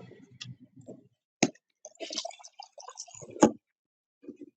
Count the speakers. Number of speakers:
0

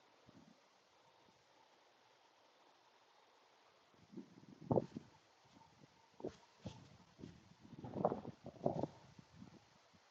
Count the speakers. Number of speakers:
0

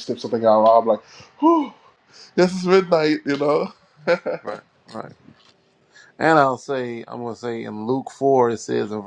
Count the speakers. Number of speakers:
2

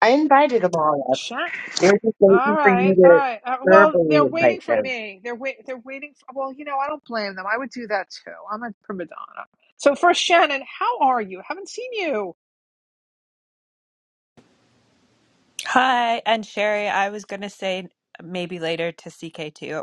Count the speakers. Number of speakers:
3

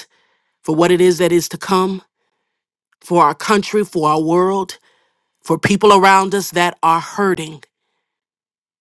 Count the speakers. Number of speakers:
1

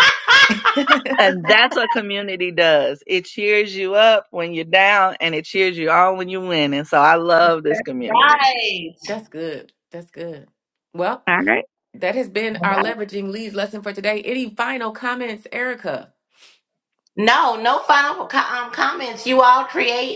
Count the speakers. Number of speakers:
3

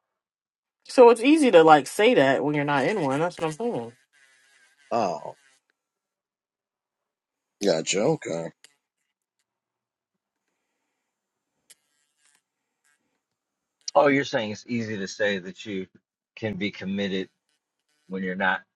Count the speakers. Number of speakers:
3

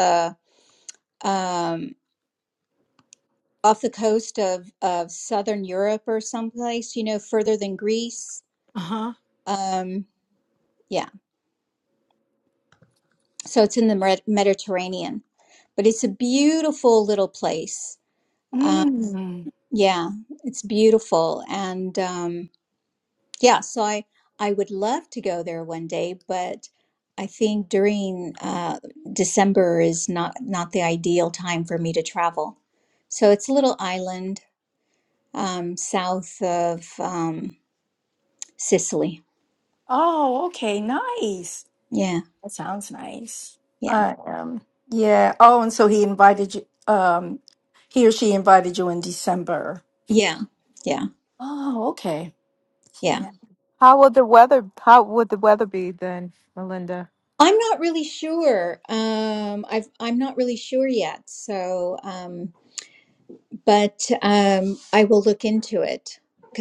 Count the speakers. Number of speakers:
3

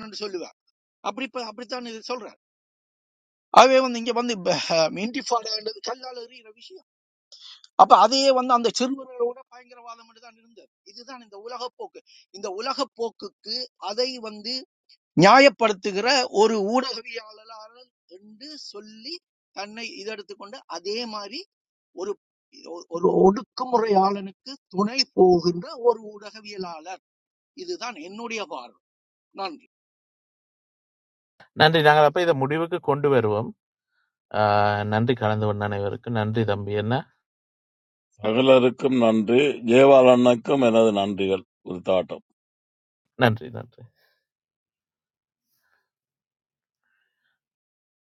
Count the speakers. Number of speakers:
3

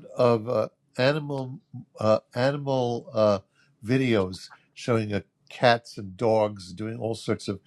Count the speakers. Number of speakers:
1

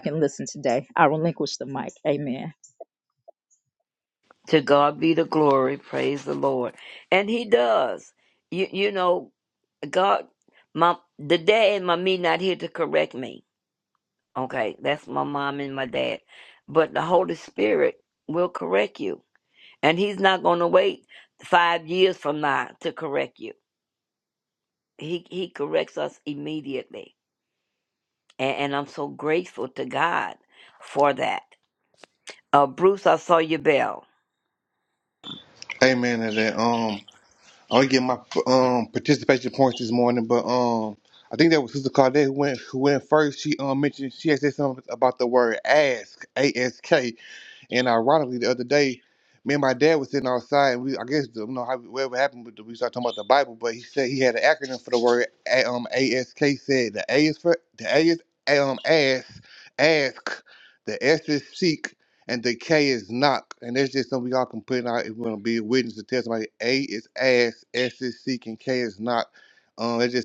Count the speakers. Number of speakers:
3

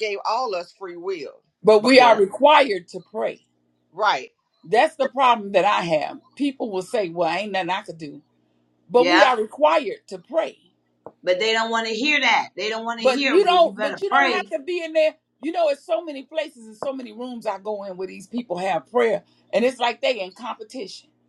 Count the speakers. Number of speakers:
3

